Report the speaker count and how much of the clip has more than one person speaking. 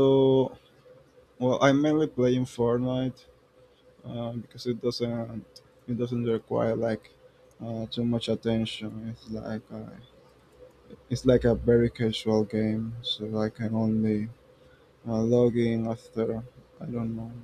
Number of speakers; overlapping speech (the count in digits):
1, no overlap